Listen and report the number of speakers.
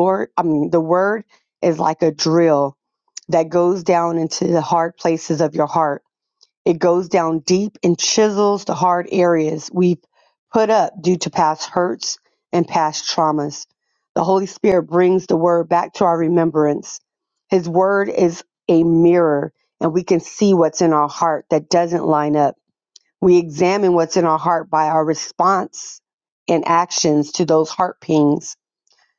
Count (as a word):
one